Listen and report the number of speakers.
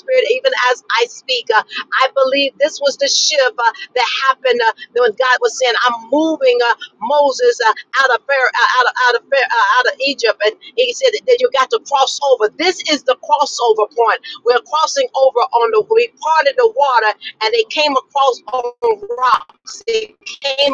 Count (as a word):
one